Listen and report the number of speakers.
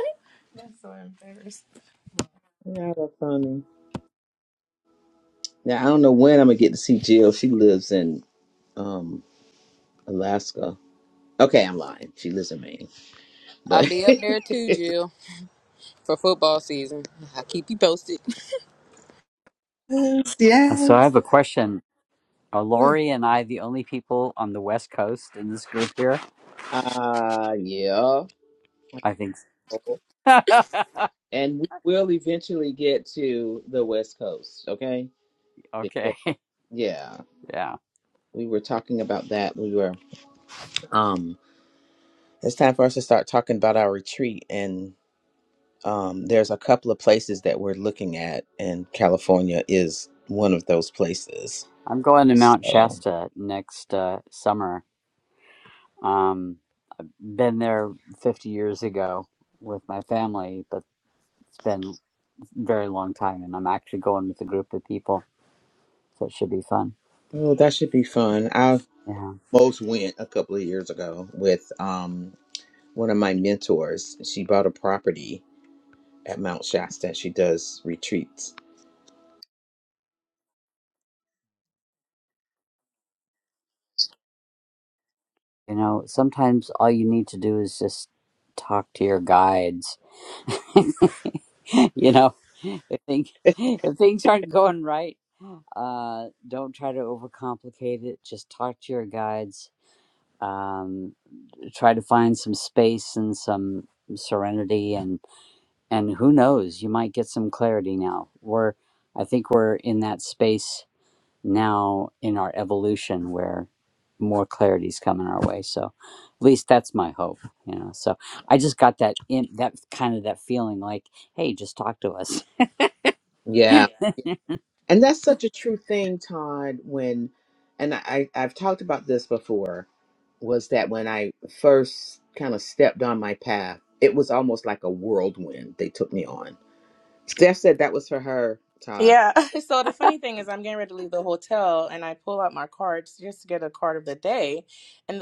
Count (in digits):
5